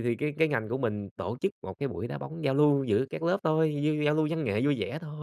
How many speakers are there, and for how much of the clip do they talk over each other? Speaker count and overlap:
1, no overlap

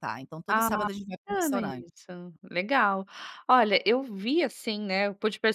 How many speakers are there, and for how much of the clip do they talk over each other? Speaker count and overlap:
2, about 14%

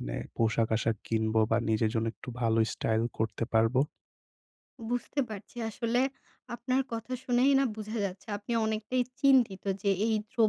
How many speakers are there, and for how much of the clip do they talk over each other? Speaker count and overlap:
2, no overlap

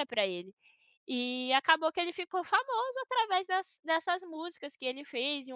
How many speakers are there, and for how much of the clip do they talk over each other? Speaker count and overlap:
1, no overlap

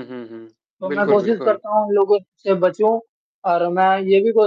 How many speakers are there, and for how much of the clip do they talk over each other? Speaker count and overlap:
2, about 16%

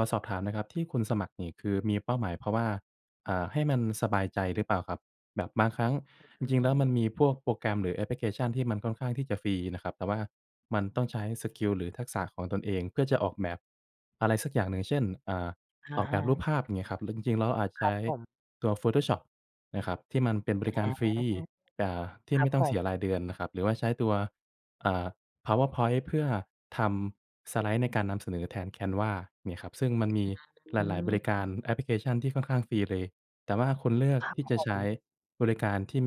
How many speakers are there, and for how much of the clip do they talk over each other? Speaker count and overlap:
2, about 6%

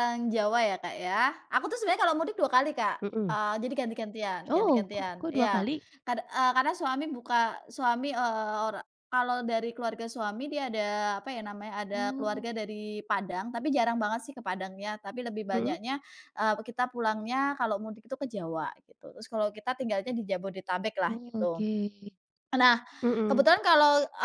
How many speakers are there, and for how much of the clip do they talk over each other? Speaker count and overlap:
2, about 12%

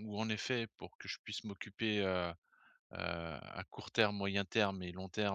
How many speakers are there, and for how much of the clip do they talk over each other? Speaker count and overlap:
1, no overlap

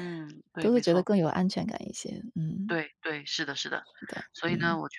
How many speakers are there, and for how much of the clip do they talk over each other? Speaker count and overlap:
2, about 18%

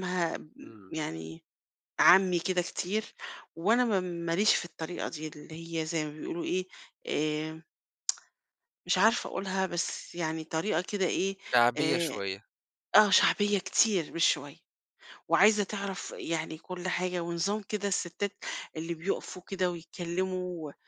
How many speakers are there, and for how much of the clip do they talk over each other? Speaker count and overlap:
2, about 2%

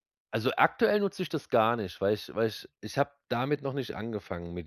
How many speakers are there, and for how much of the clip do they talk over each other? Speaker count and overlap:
1, no overlap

